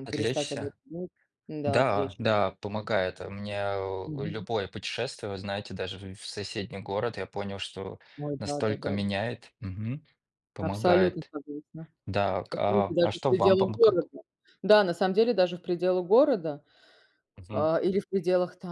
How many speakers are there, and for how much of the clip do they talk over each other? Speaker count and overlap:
2, about 23%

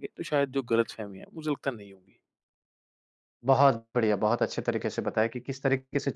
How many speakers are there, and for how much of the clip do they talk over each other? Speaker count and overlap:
2, no overlap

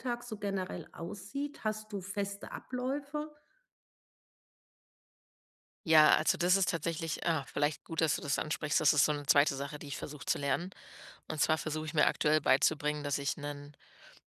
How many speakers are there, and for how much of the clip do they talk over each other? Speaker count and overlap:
2, no overlap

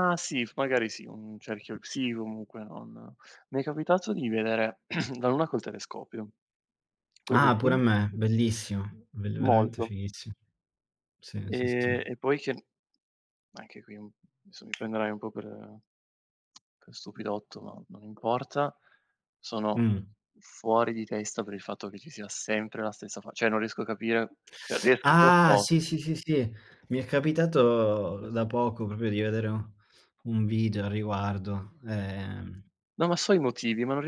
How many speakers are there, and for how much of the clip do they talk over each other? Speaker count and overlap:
2, about 6%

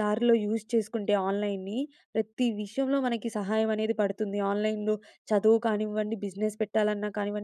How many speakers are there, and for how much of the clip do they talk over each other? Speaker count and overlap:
1, no overlap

